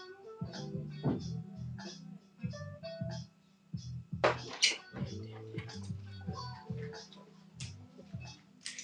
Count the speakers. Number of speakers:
0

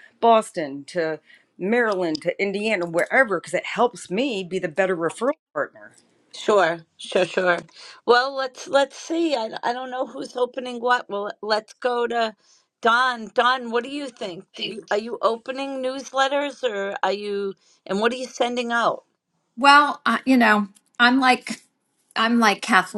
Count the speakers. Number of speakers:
3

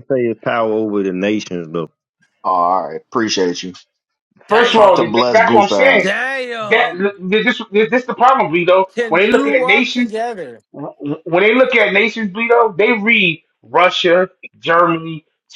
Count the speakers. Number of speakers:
4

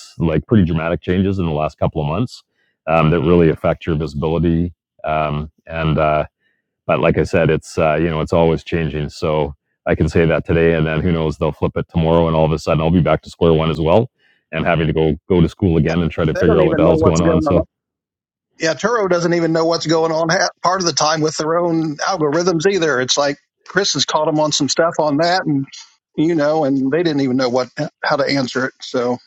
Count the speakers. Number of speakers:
2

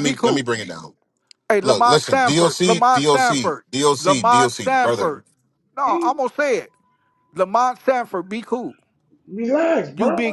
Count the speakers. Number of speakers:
3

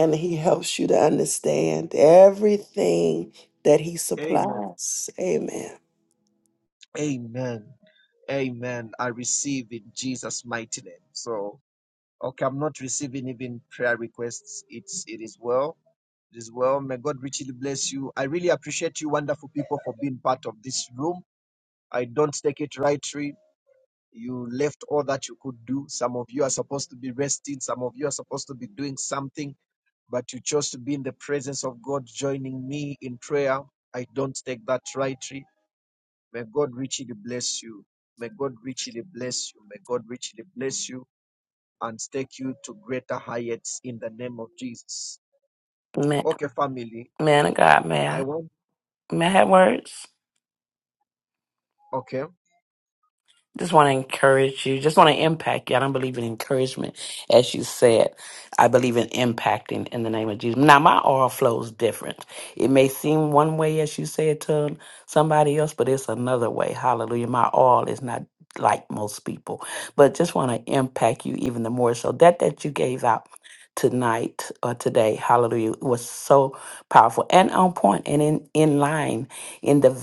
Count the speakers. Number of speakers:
3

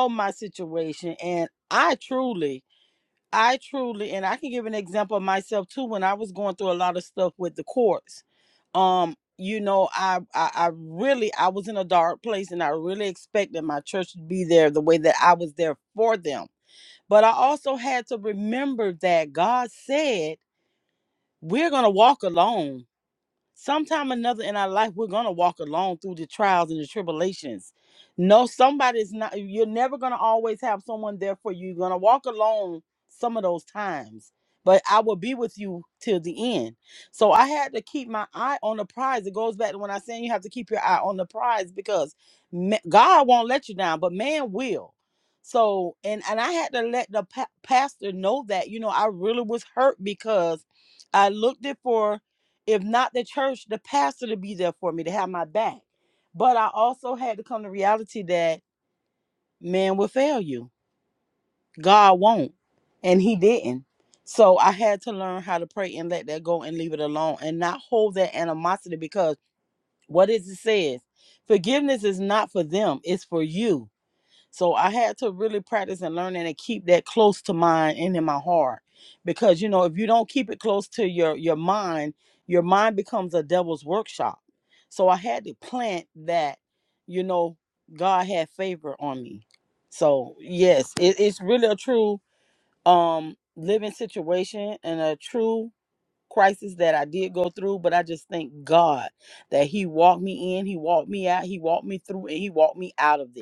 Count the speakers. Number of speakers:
1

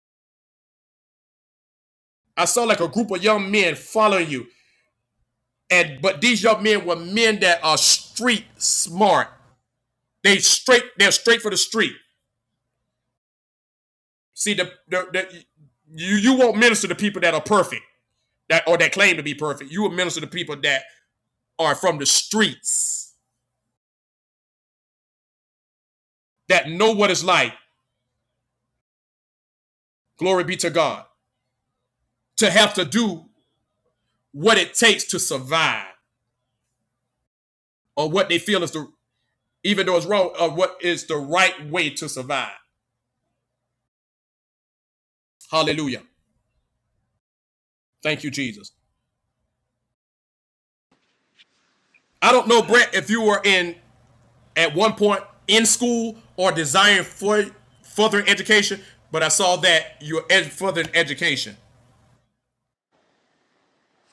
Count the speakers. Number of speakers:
1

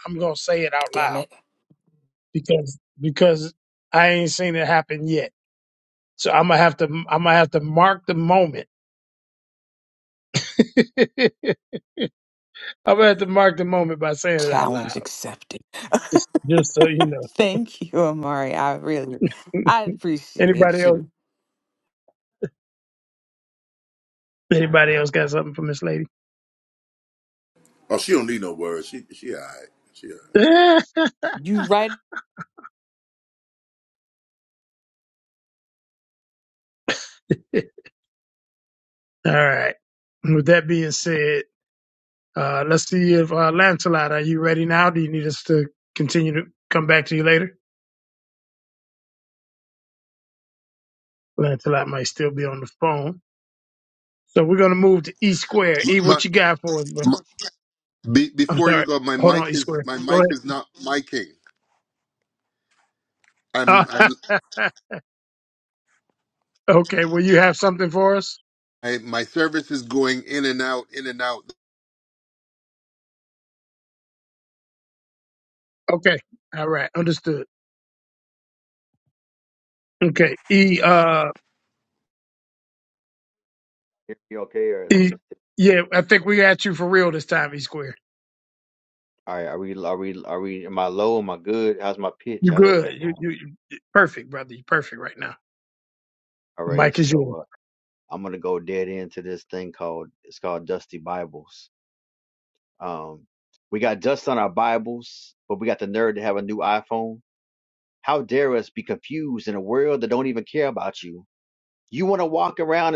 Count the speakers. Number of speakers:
5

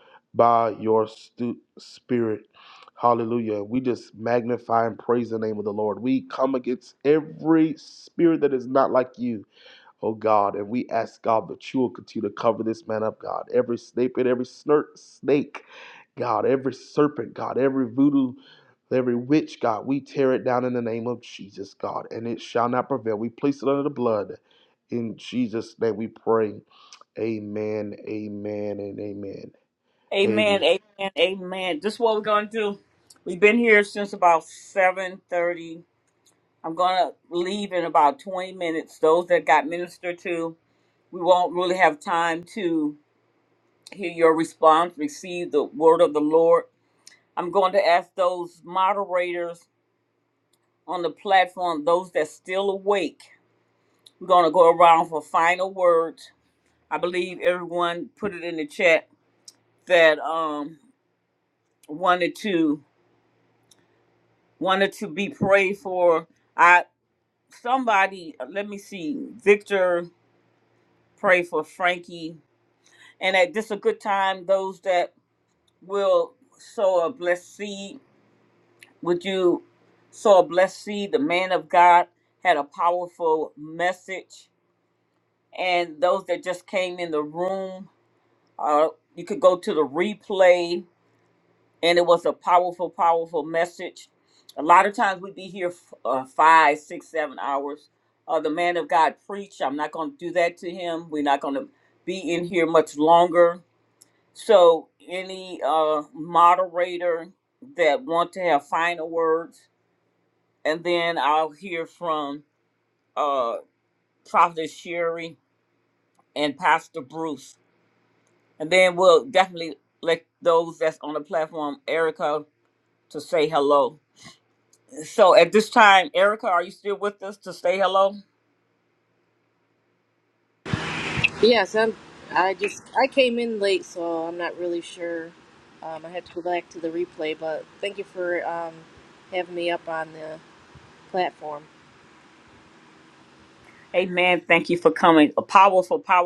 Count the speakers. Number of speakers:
3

